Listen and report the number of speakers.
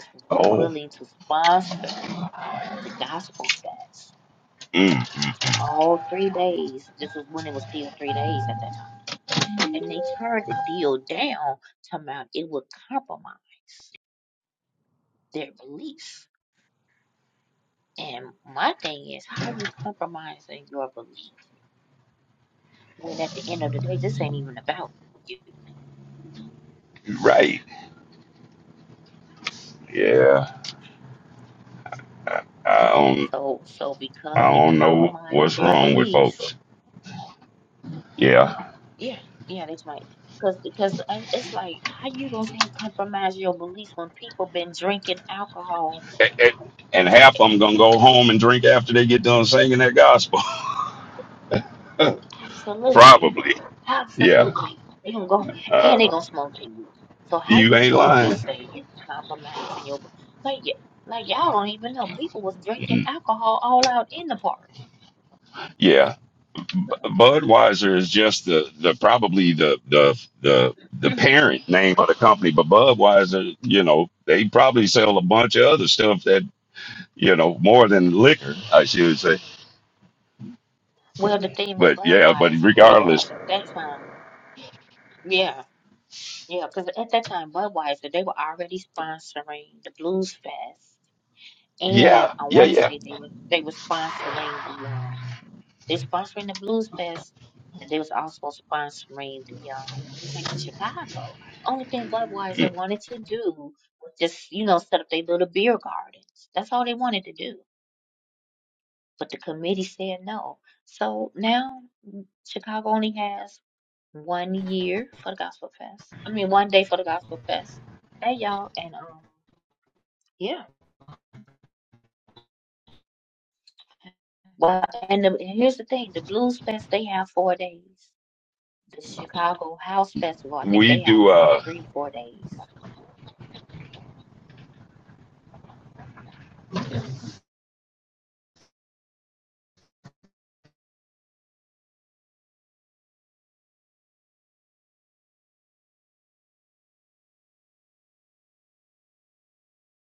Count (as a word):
two